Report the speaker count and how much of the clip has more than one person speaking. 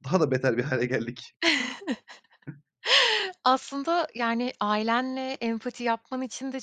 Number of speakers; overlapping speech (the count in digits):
2, no overlap